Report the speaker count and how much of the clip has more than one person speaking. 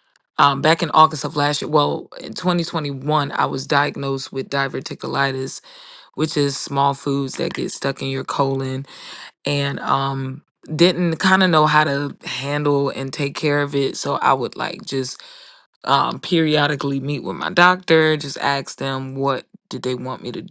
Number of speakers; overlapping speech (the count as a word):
one, no overlap